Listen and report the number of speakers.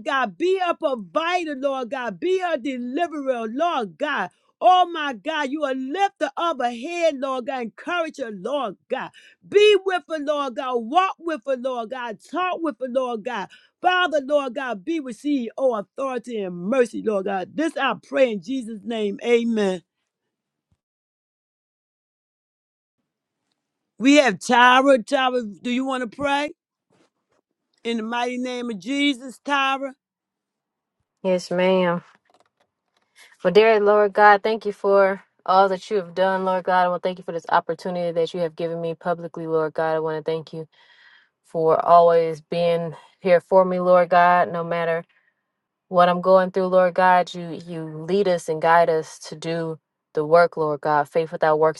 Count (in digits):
2